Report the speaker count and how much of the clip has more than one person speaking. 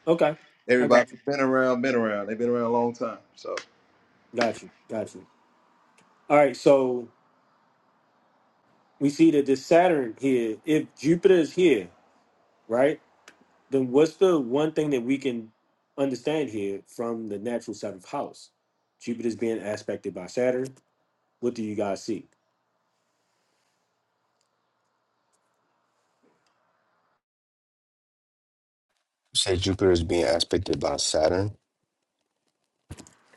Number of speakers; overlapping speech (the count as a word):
three, about 1%